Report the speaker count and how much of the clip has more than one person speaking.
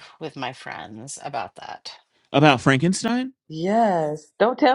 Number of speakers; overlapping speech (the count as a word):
three, no overlap